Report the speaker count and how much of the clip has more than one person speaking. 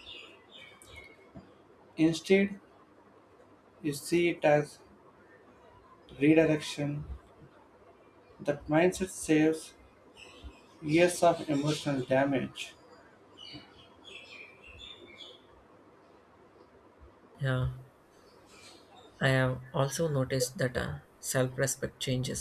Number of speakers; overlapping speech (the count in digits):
2, no overlap